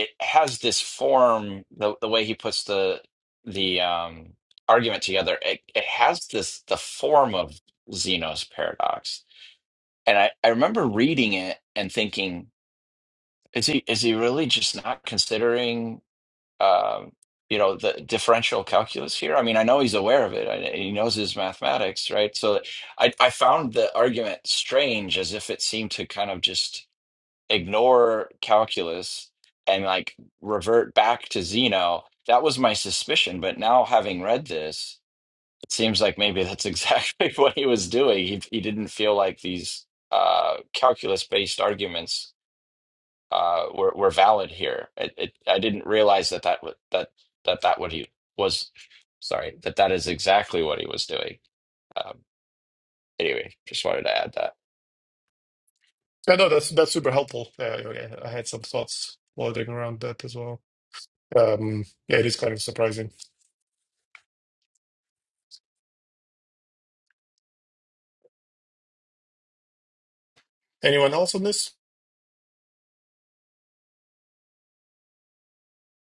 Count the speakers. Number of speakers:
2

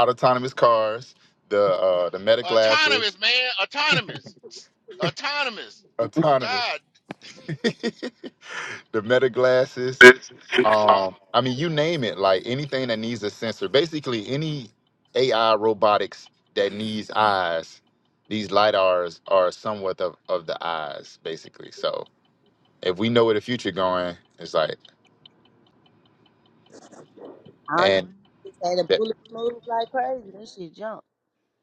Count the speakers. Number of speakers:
3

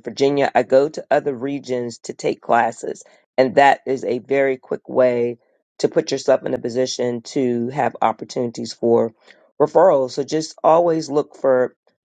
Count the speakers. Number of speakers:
1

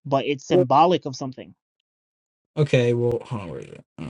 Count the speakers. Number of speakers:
2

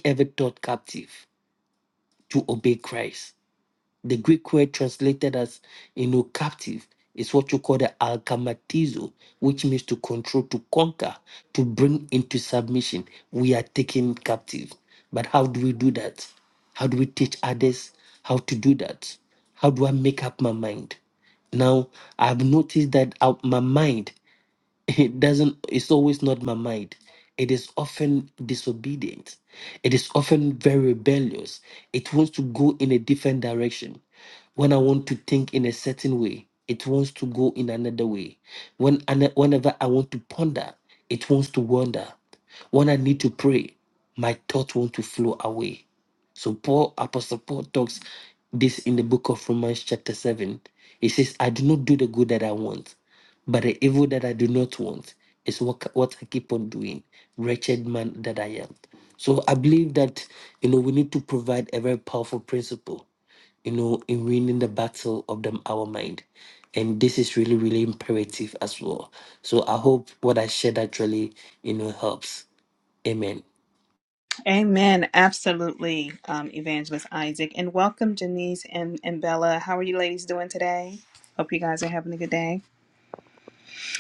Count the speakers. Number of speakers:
2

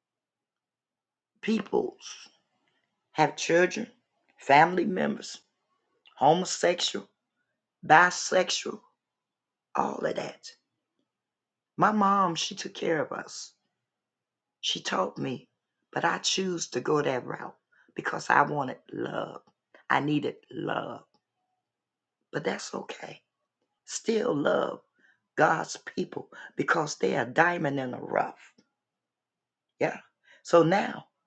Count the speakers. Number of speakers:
1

